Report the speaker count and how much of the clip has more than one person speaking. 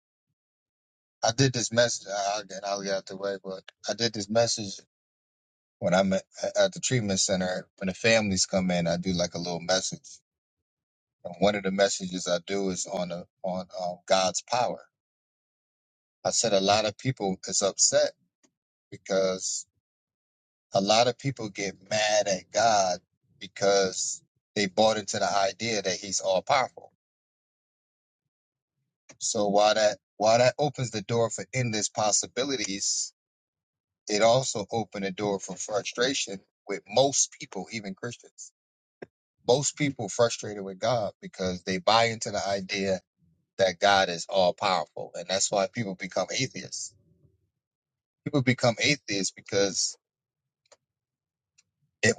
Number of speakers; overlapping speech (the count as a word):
one, no overlap